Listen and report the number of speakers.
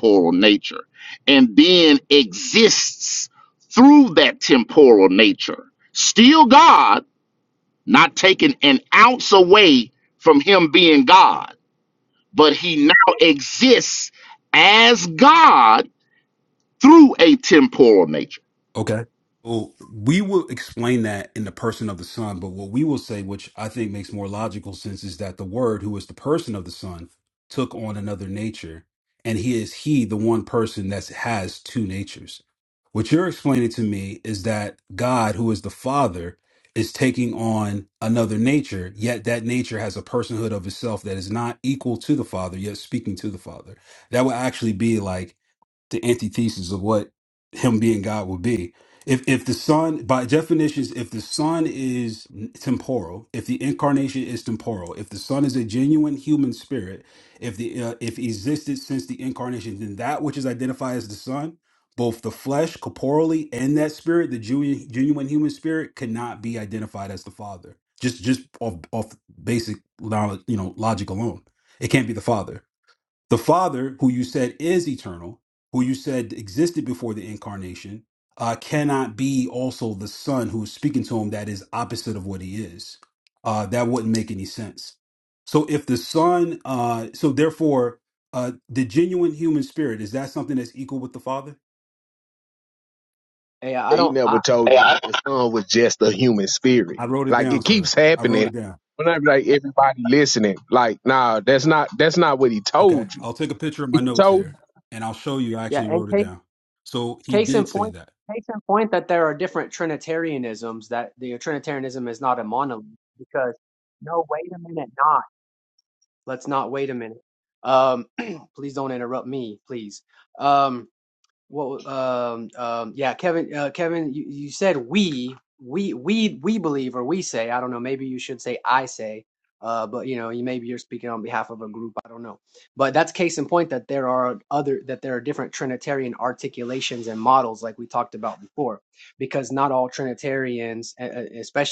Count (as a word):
four